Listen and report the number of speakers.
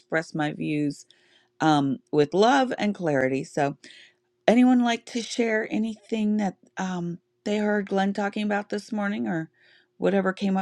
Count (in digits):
1